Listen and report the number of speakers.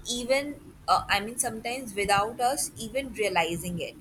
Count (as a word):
one